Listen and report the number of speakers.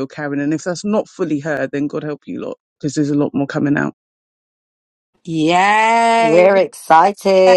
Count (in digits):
3